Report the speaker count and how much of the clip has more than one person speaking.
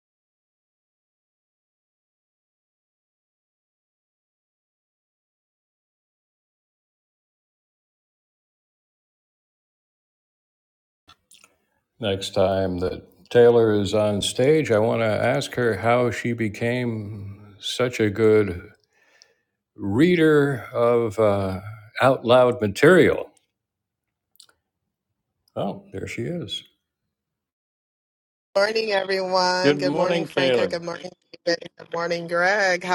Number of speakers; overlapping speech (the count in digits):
2, about 3%